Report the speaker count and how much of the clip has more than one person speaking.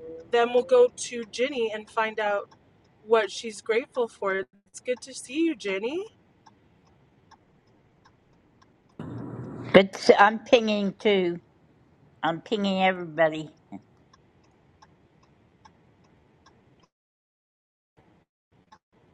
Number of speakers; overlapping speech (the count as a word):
two, no overlap